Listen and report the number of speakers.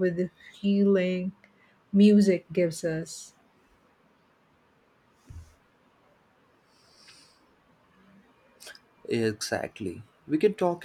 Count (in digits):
2